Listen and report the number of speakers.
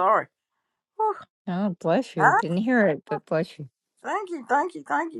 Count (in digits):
2